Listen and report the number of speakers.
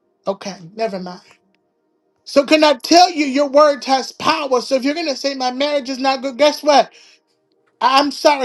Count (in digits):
1